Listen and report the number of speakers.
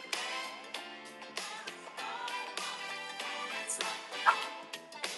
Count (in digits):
0